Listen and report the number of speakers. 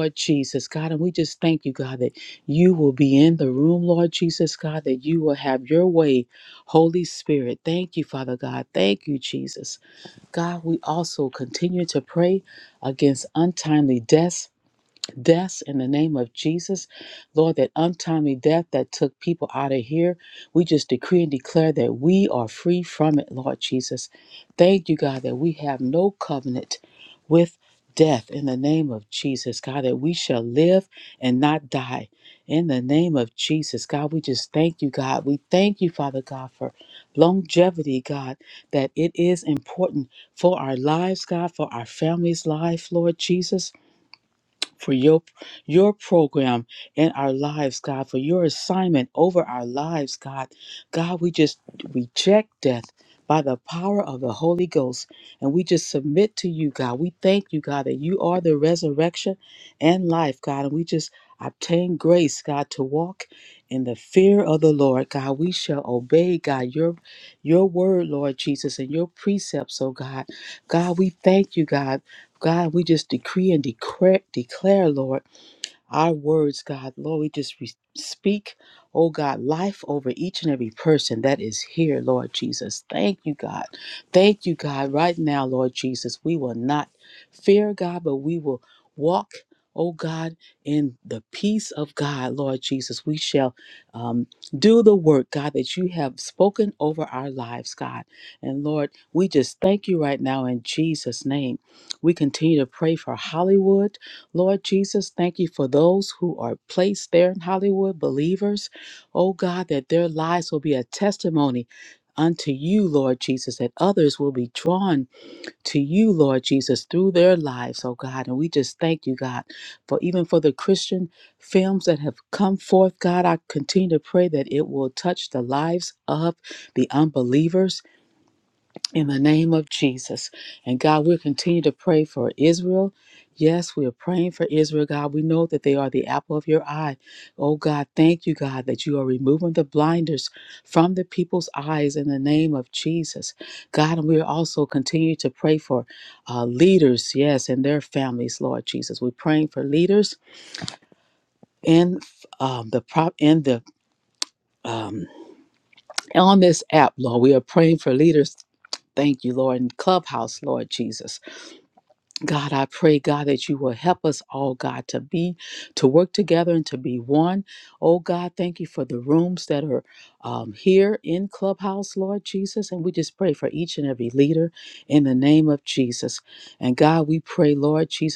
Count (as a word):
one